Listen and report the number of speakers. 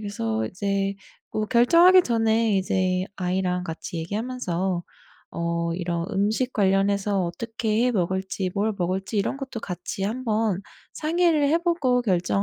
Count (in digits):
1